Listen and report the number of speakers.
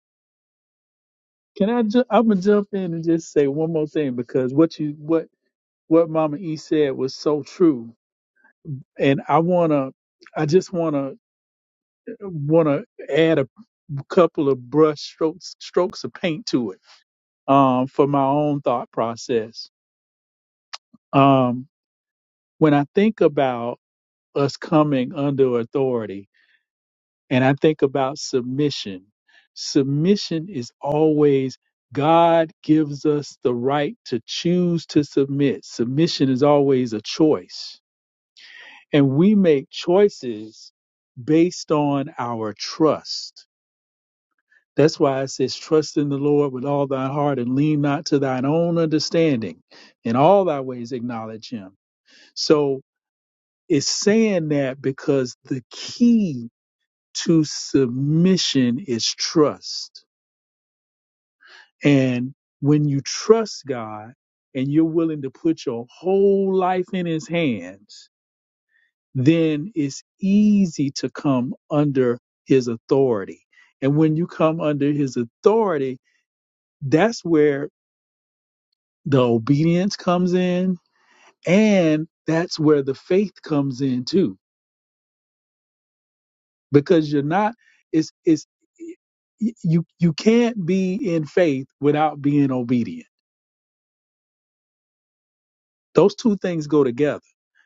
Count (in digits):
1